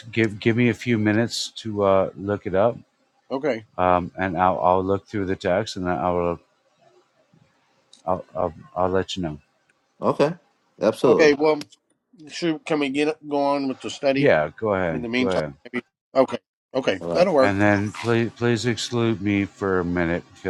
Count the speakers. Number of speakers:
three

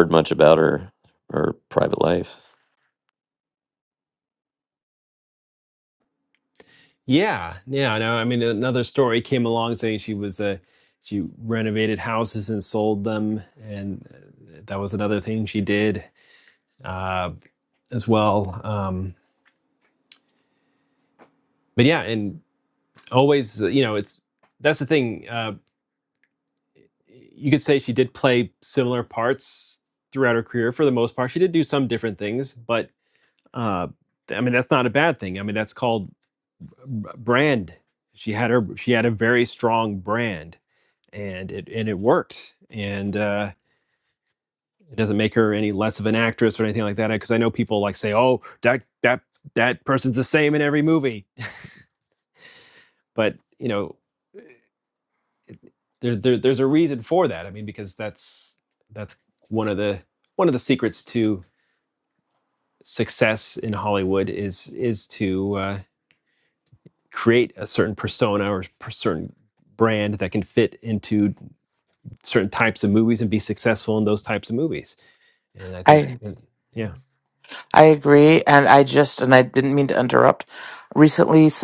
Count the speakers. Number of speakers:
three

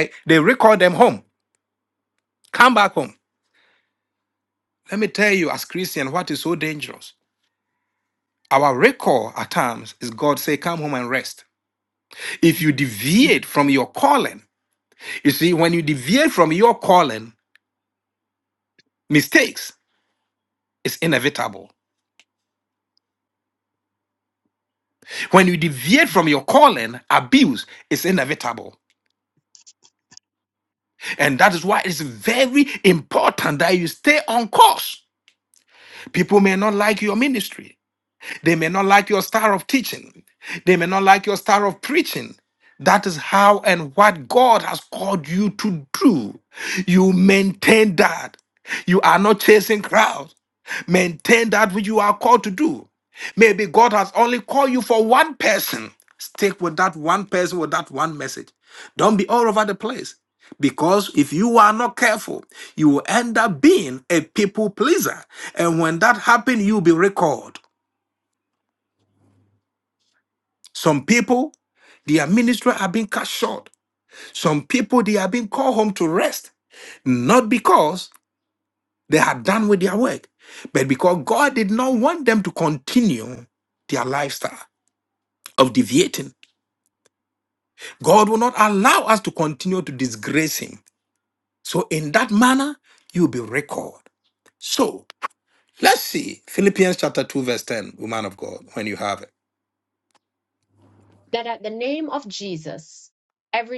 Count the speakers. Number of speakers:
two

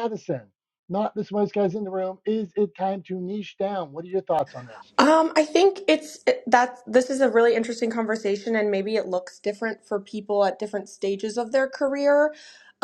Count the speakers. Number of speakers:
two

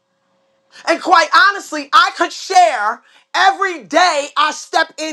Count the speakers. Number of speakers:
one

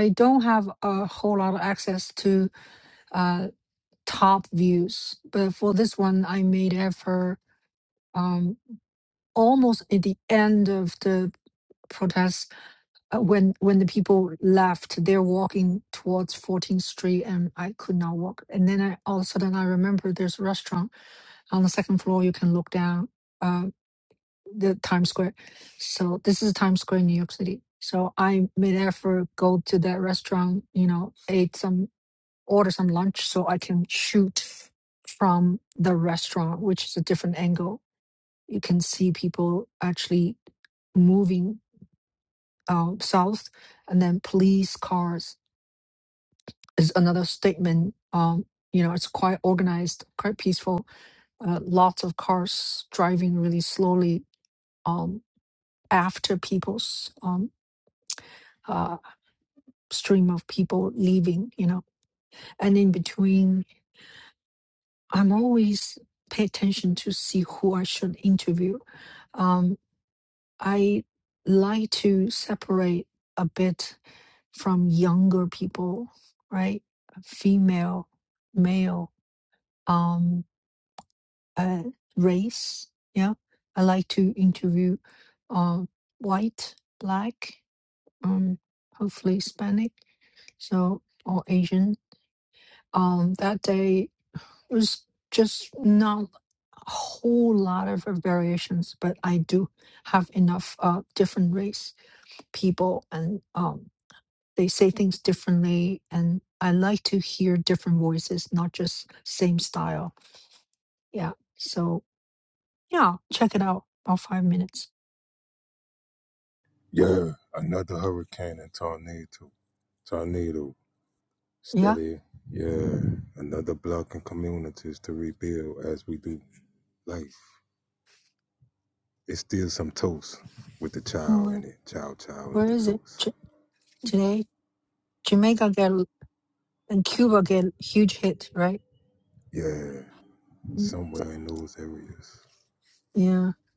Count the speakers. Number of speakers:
two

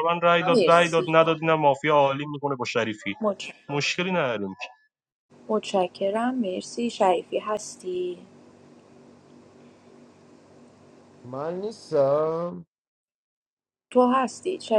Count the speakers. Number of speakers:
three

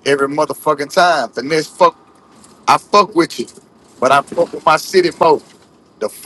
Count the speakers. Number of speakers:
one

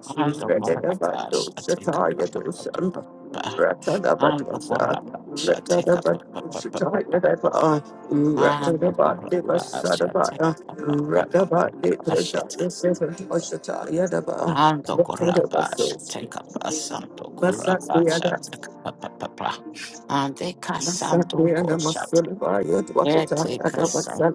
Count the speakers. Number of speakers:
two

